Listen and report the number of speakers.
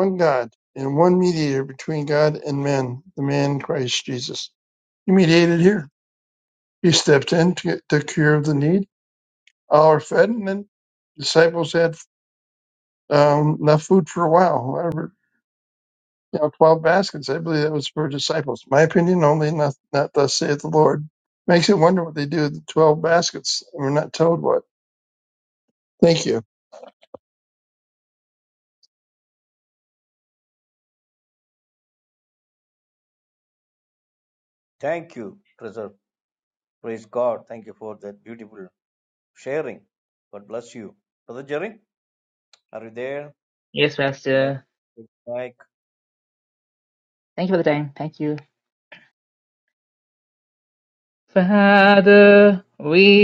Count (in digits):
3